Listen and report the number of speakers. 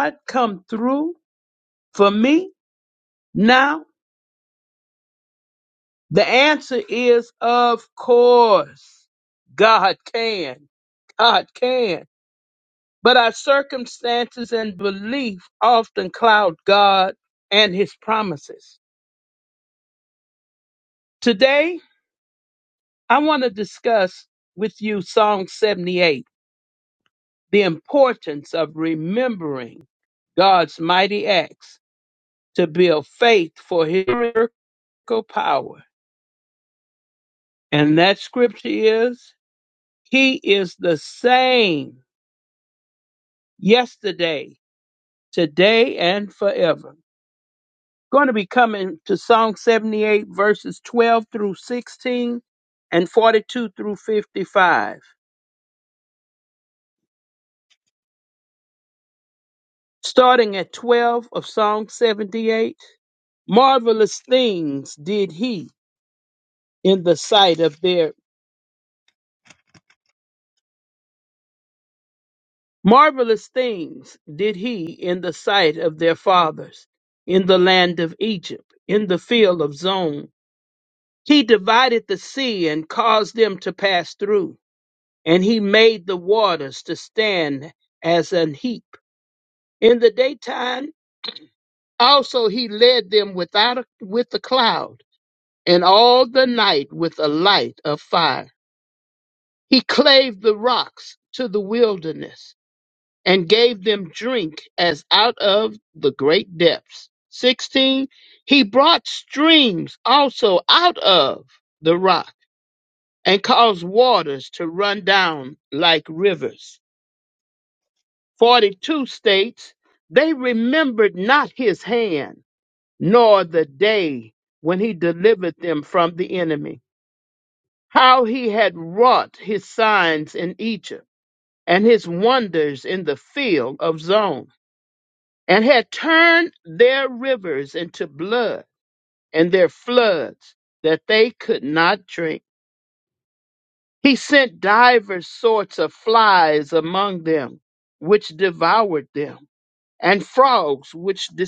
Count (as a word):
one